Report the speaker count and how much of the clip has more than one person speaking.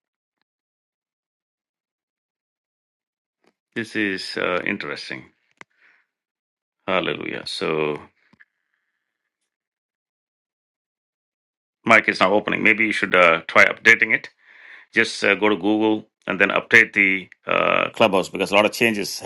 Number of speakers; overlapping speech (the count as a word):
one, no overlap